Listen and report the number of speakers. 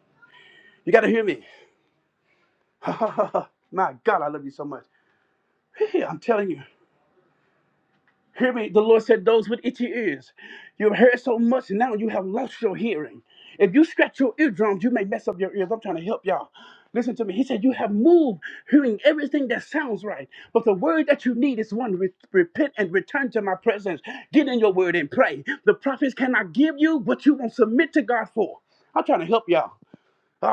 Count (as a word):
one